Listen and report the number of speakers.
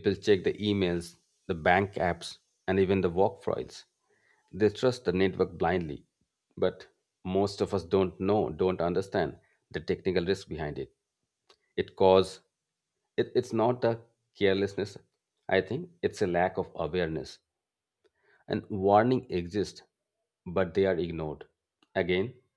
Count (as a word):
one